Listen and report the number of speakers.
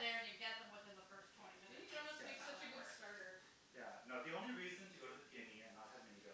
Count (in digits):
3